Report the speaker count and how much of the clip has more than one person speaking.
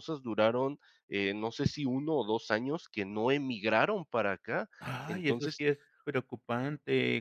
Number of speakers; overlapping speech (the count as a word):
two, about 6%